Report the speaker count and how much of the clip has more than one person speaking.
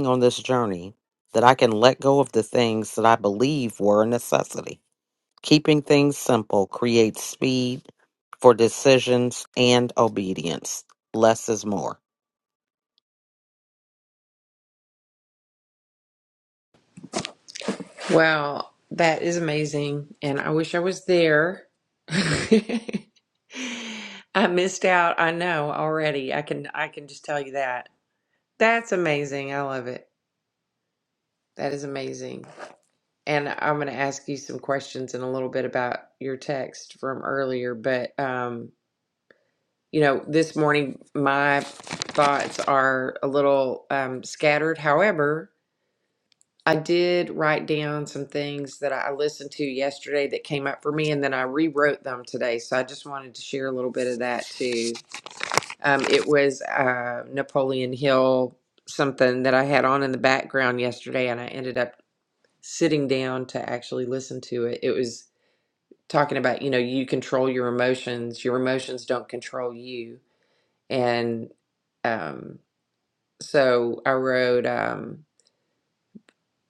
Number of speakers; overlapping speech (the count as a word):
two, no overlap